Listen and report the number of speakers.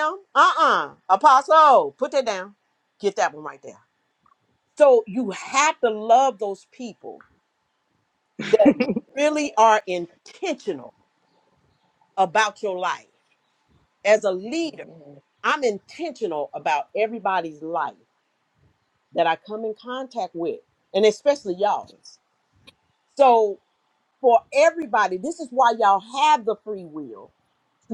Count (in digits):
1